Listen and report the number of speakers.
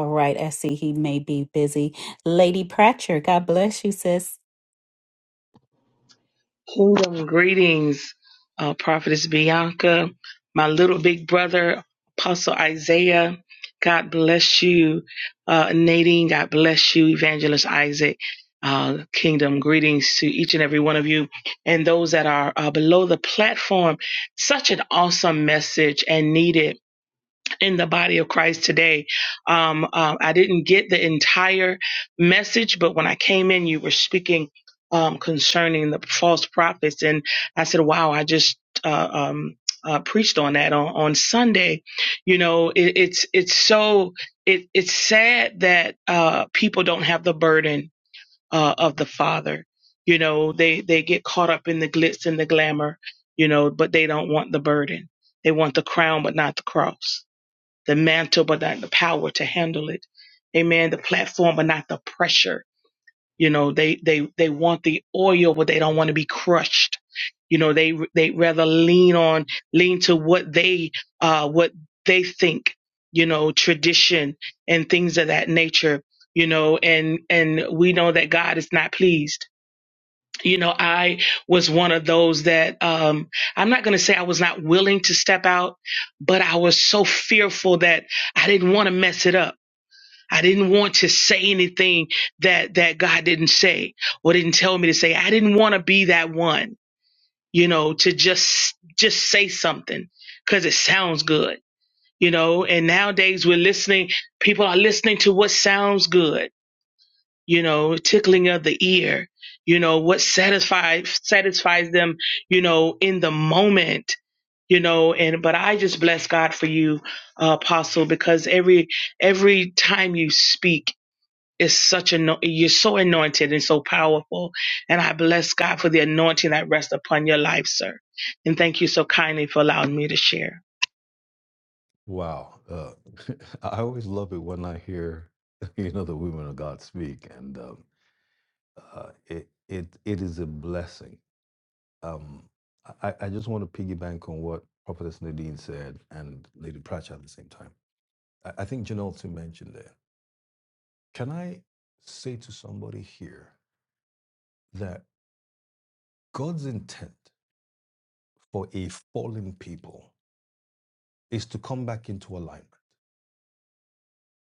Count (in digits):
3